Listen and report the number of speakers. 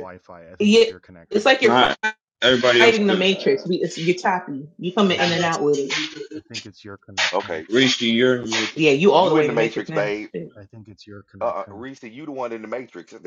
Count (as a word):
four